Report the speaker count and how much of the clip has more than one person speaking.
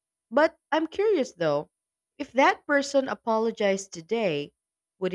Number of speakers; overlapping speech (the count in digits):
1, no overlap